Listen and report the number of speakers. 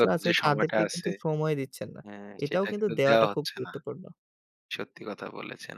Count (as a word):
two